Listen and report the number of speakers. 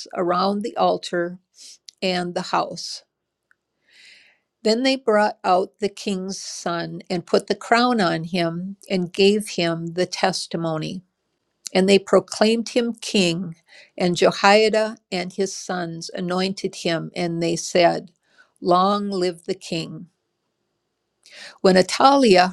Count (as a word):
one